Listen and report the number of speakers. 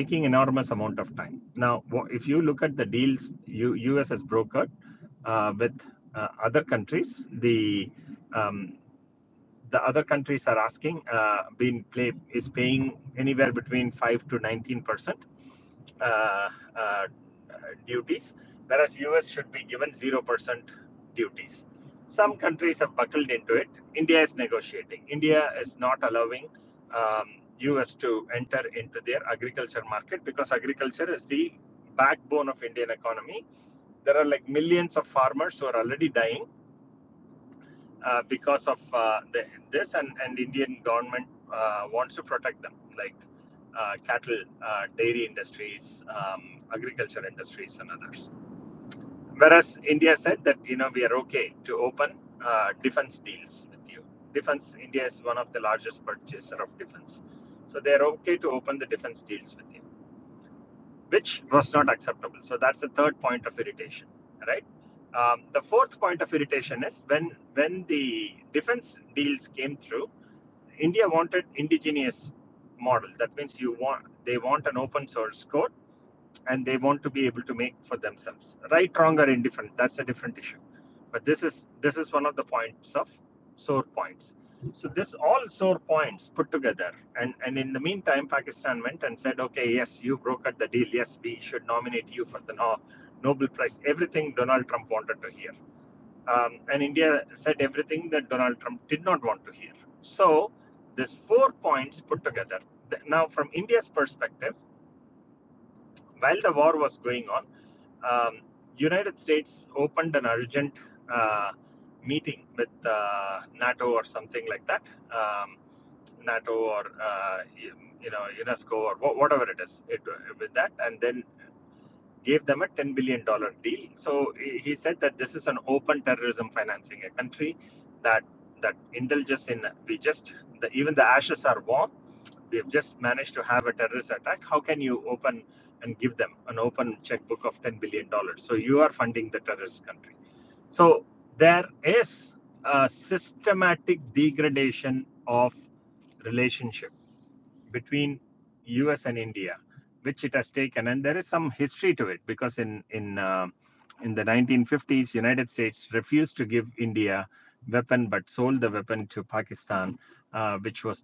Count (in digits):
1